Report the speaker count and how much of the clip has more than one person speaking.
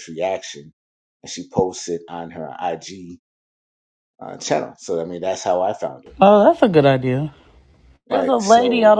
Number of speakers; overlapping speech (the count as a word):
two, about 10%